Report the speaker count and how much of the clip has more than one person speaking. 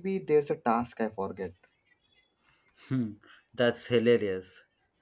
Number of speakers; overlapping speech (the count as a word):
two, no overlap